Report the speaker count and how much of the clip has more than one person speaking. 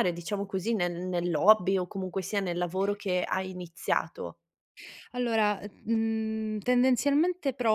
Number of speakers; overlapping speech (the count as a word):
two, no overlap